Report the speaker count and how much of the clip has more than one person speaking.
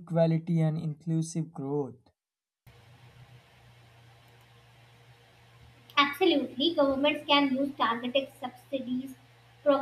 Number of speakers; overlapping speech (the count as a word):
two, no overlap